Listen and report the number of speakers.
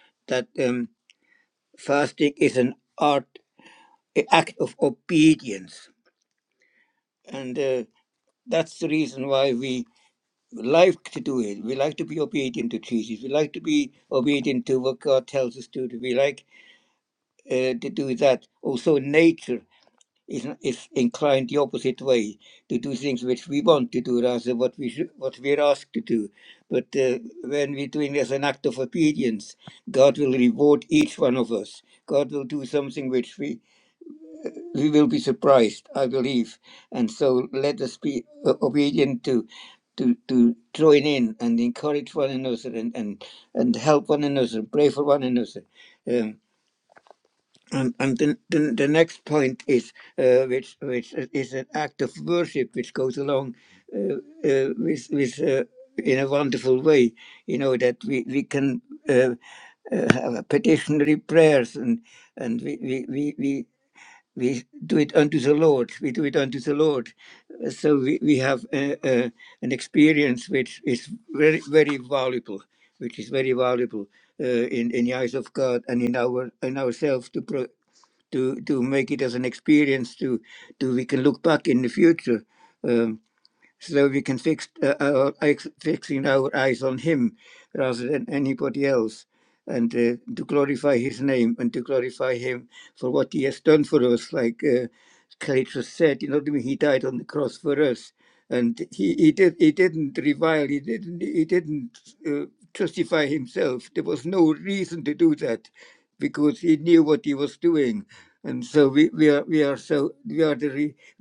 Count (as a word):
one